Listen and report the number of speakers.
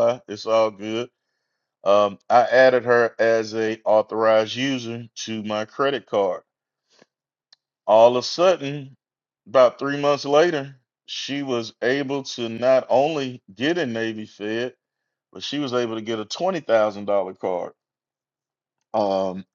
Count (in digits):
1